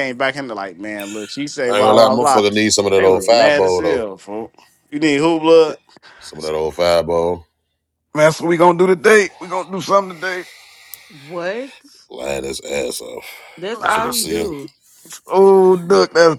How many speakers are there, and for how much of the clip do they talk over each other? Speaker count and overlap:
four, about 16%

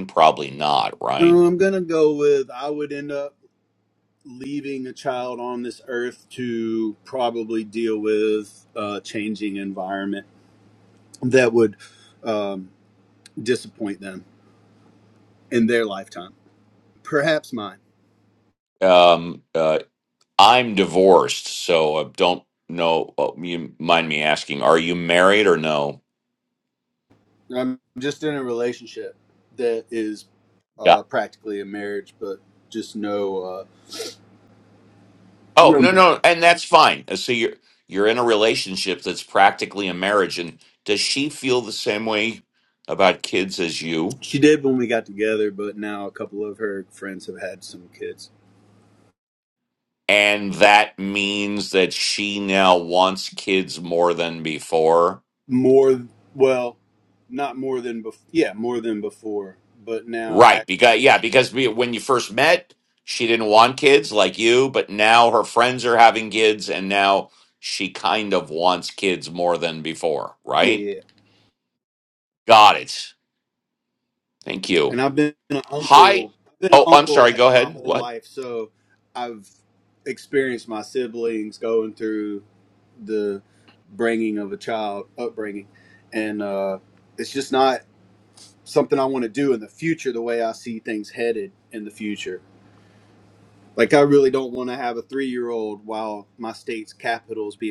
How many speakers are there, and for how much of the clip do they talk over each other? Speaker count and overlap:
two, about 3%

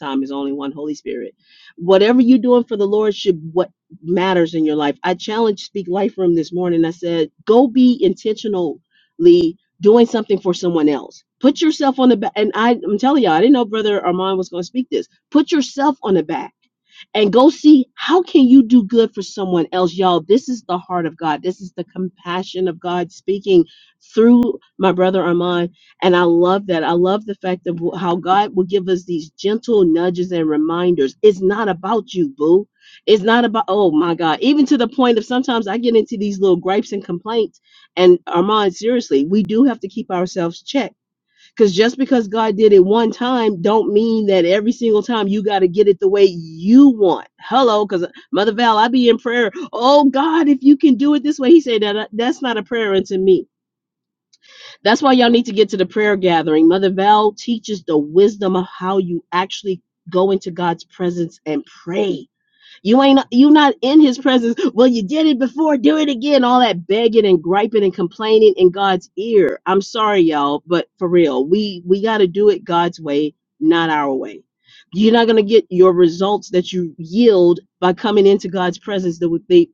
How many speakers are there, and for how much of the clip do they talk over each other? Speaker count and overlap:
one, no overlap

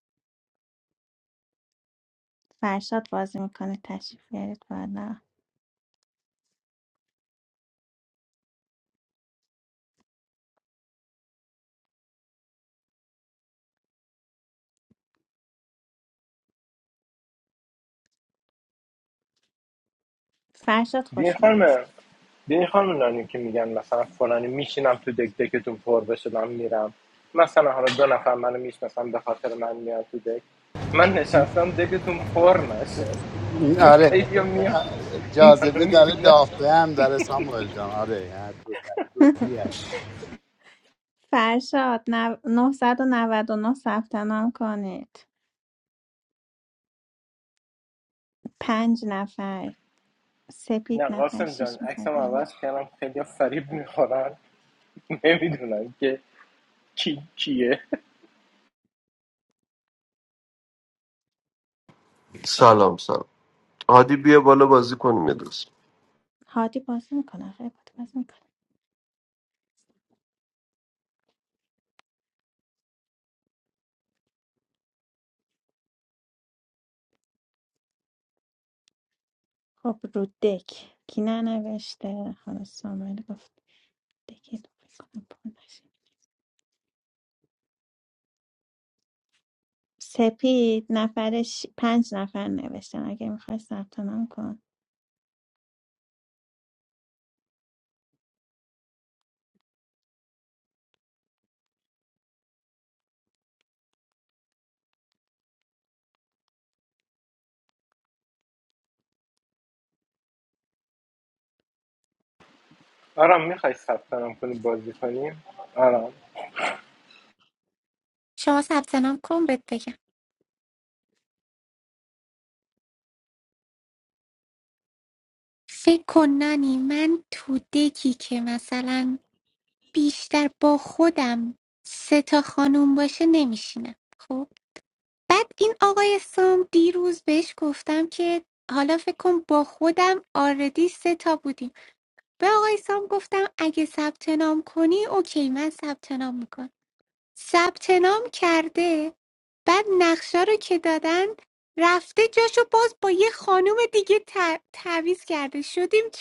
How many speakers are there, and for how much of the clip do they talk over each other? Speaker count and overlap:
five, about 2%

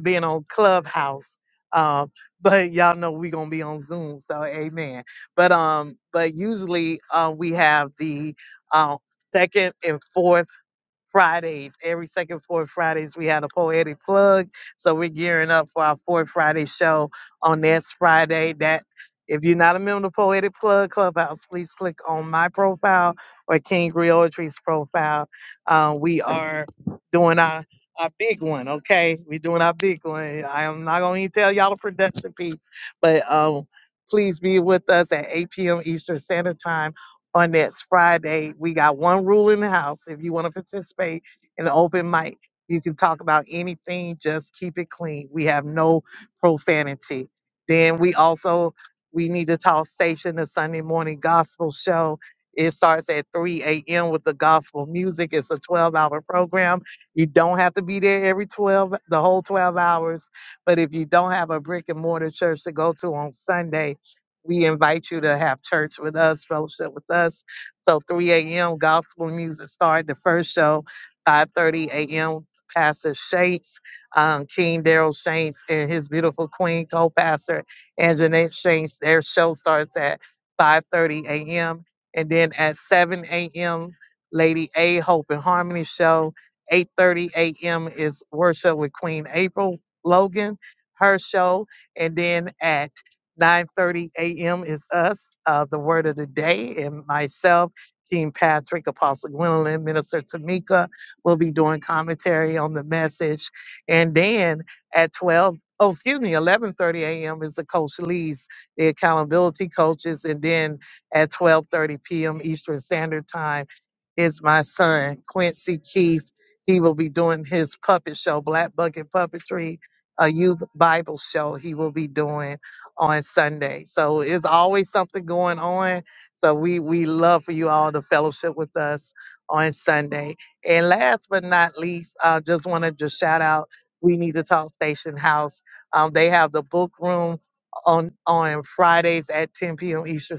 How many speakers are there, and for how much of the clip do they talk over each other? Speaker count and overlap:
one, no overlap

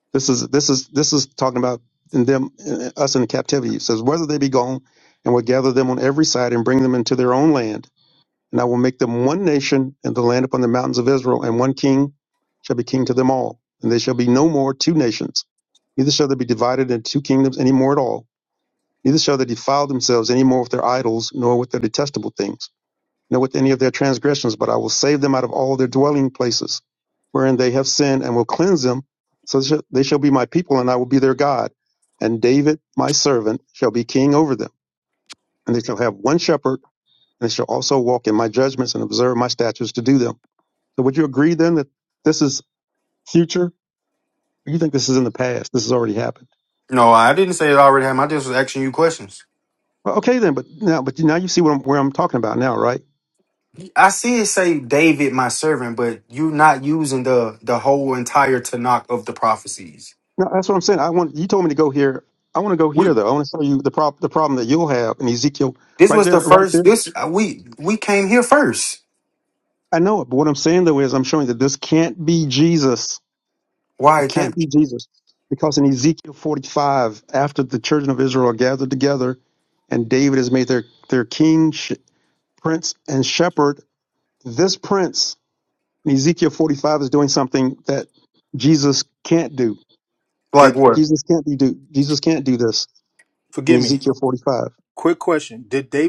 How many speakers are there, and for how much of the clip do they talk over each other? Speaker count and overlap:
three, about 2%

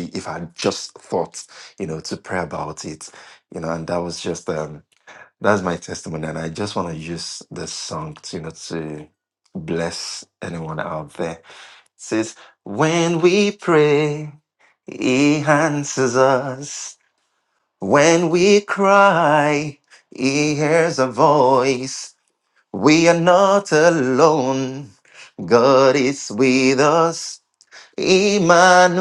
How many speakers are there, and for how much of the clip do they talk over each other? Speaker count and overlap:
one, no overlap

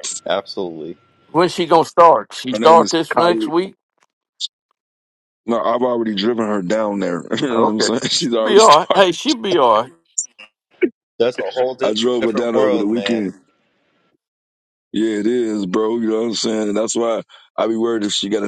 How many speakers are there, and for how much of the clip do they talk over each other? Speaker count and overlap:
three, about 21%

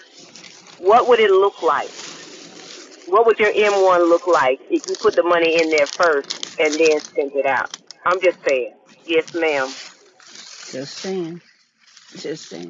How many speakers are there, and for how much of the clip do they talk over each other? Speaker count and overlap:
two, no overlap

